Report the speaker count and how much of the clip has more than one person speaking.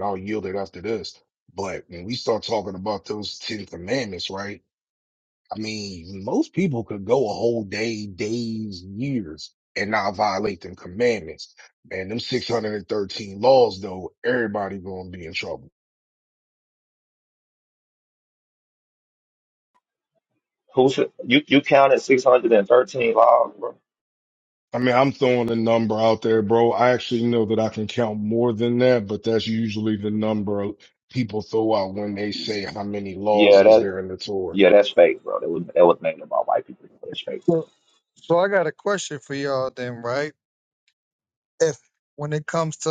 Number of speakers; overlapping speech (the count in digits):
3, about 2%